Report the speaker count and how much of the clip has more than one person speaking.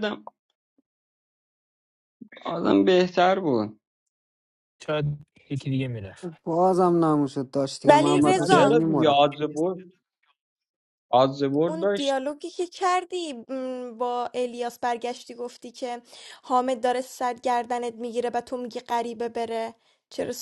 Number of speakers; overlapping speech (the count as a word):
four, about 8%